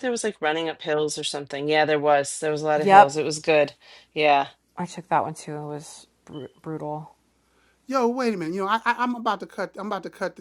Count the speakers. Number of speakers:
3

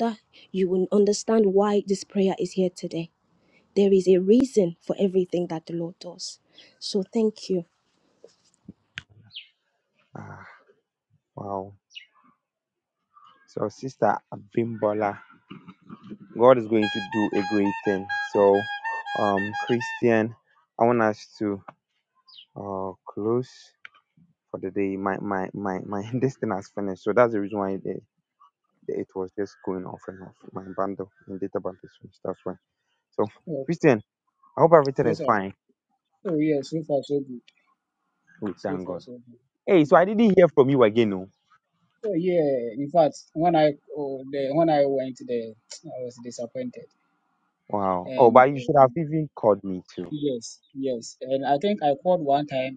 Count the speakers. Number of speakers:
3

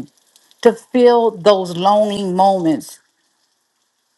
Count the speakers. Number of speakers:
1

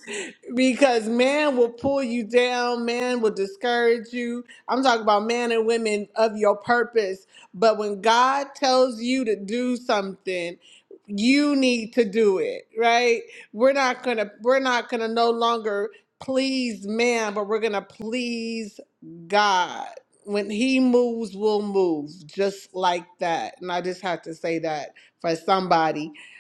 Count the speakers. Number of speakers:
1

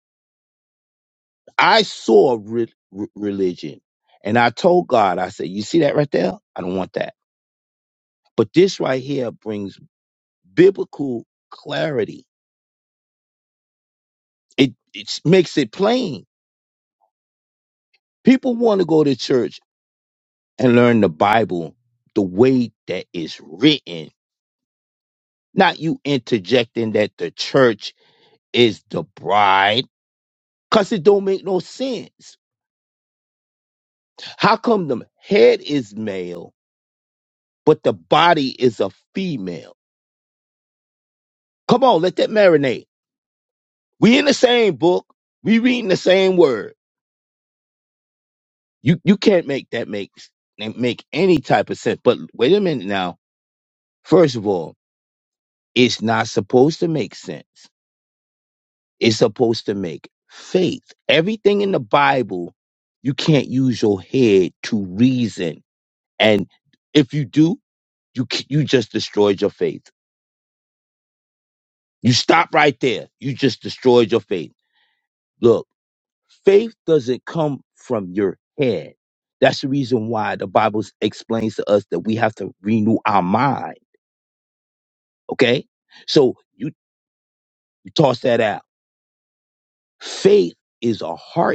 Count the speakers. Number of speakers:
1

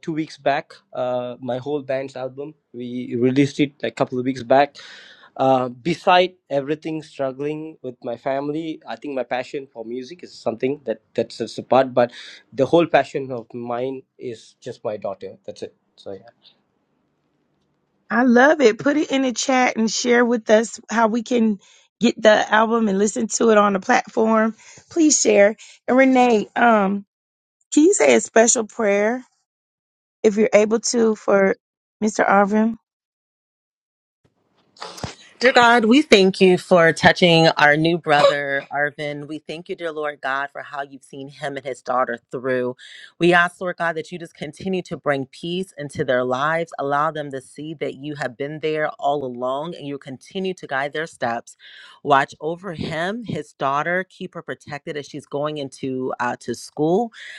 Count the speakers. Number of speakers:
3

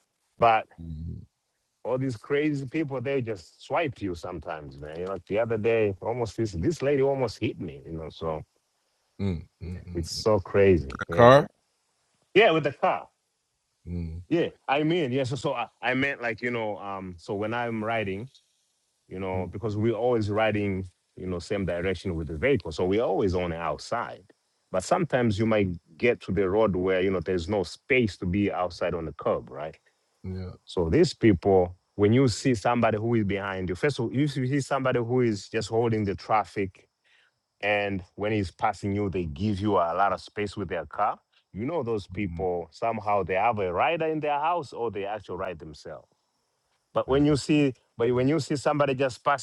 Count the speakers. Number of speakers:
2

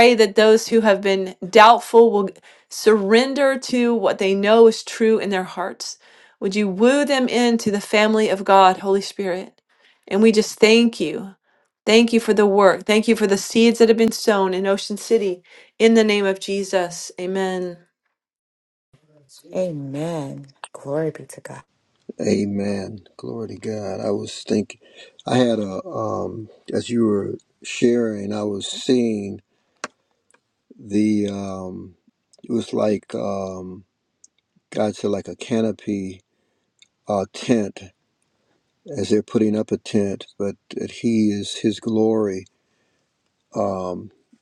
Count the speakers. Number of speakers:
3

